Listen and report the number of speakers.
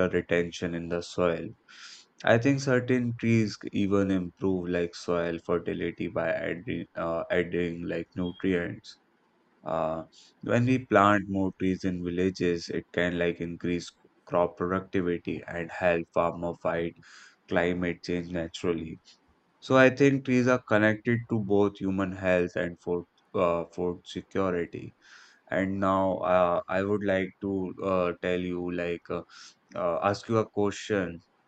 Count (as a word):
one